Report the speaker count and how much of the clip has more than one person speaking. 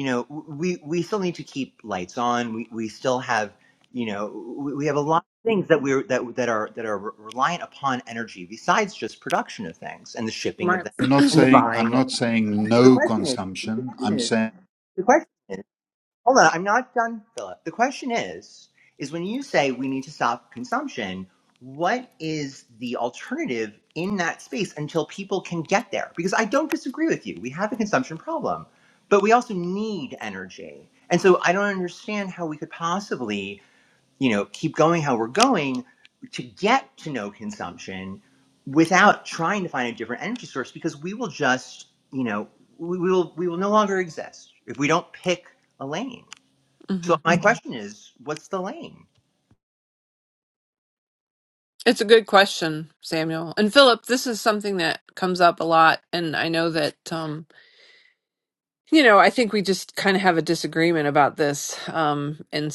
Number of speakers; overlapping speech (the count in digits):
3, about 4%